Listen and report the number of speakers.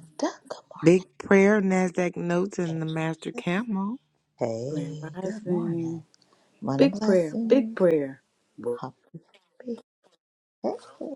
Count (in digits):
3